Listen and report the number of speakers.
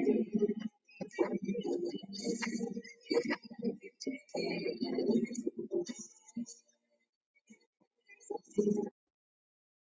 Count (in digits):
0